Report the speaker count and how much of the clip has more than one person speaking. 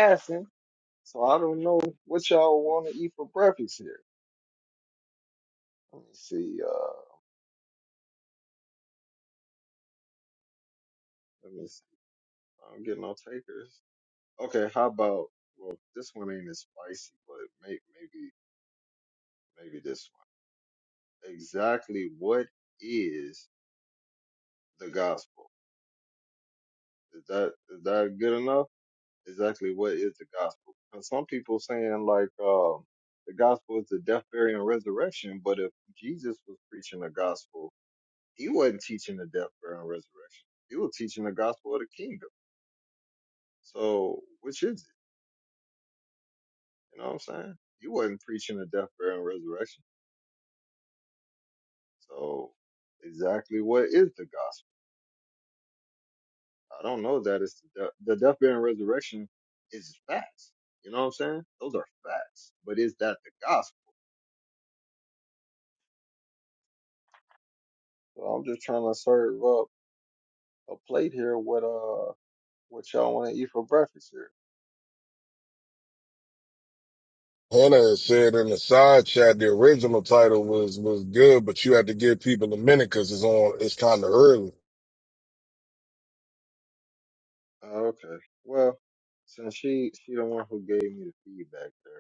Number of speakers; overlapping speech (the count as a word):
two, no overlap